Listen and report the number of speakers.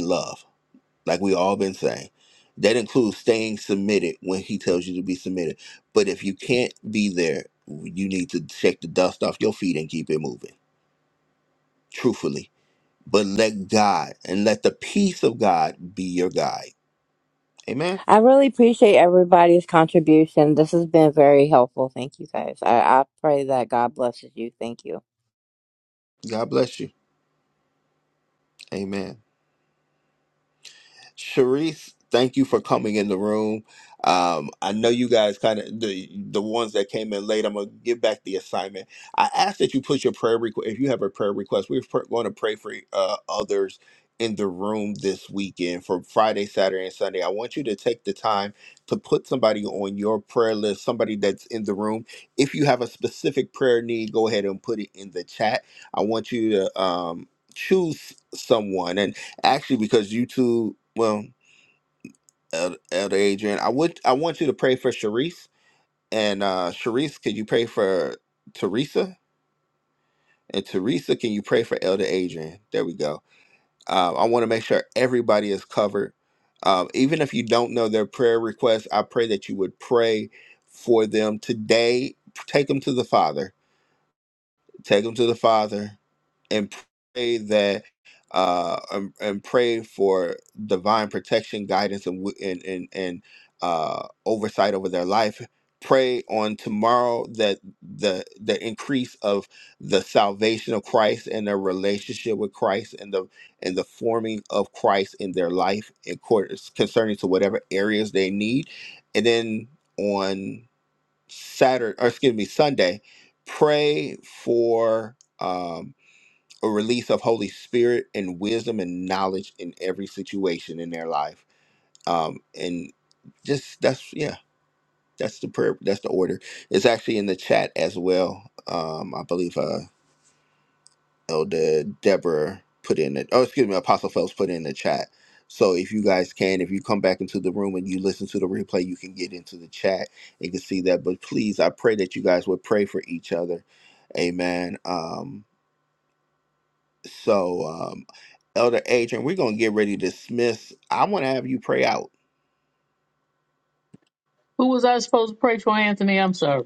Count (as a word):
three